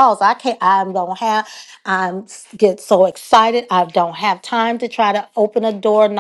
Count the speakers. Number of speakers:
one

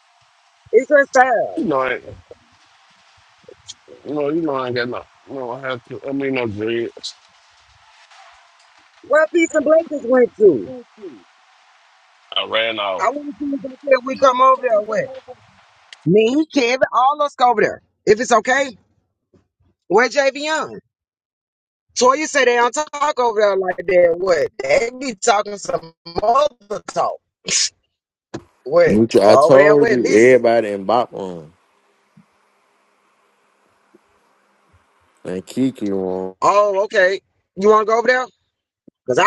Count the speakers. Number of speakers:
three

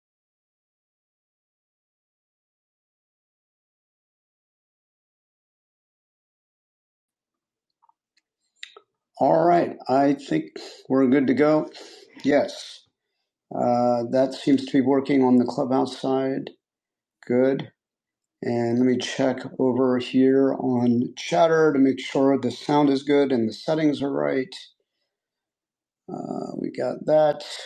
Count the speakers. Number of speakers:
one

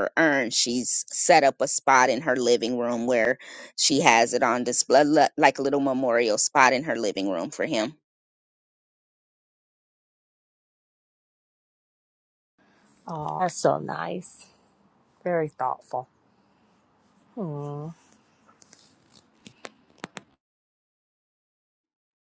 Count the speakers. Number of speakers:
two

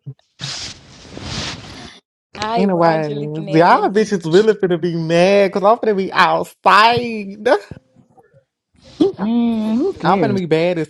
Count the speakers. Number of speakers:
three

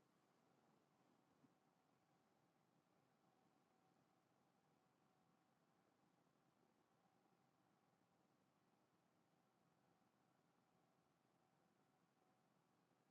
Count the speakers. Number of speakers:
zero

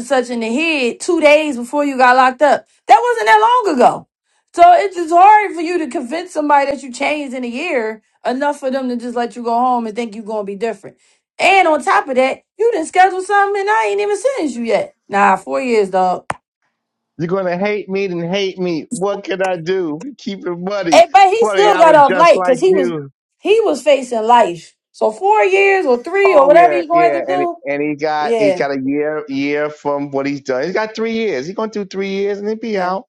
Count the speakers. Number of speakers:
two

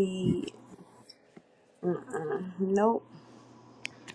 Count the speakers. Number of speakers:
one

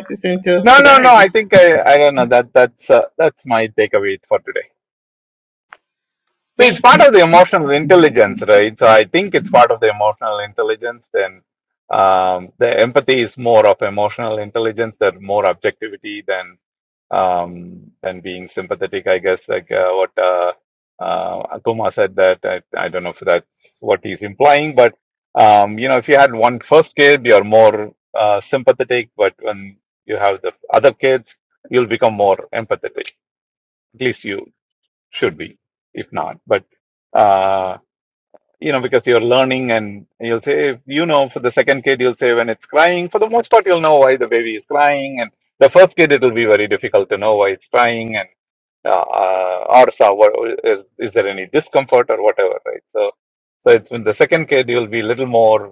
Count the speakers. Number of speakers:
two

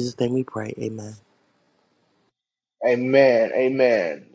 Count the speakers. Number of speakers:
two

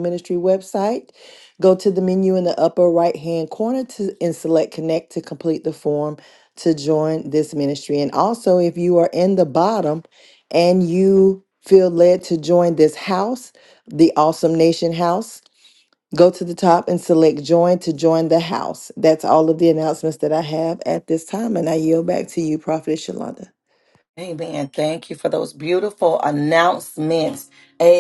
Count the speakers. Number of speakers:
two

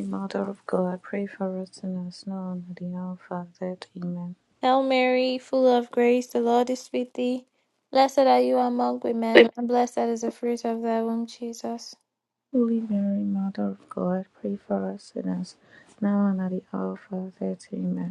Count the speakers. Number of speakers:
two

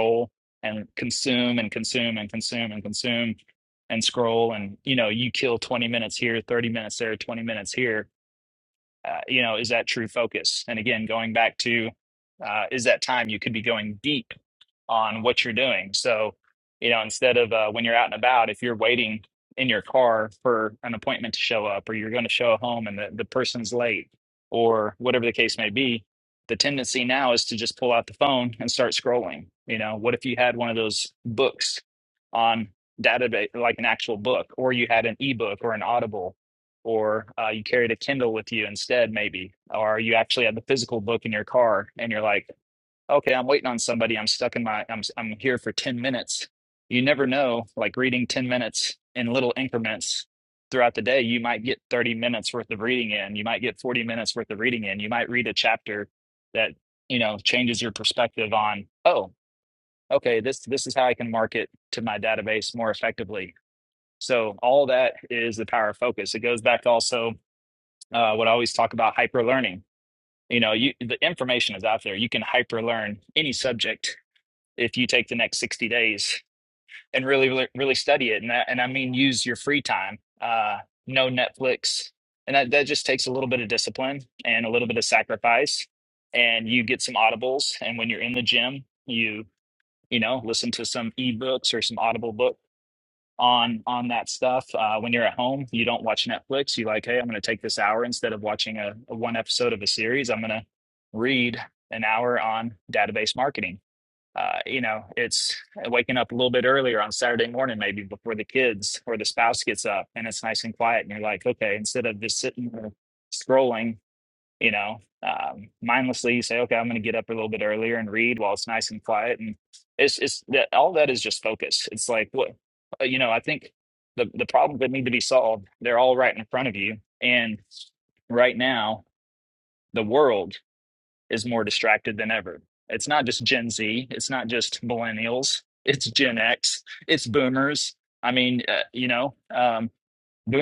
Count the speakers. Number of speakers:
one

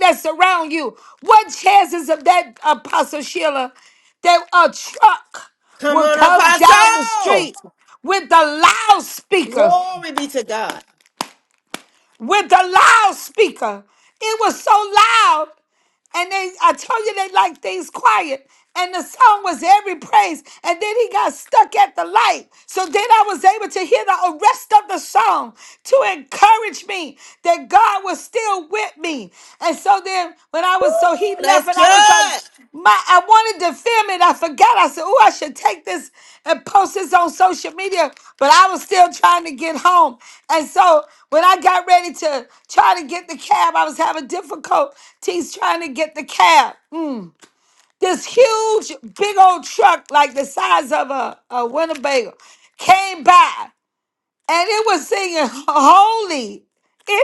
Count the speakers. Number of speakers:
two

